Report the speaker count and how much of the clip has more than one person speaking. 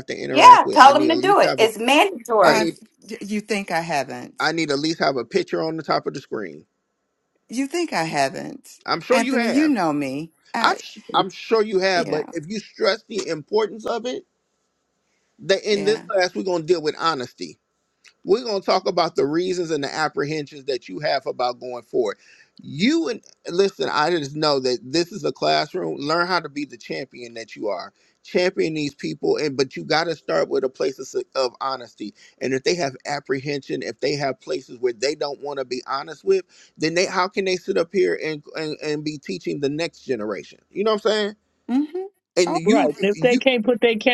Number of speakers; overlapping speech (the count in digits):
4, about 9%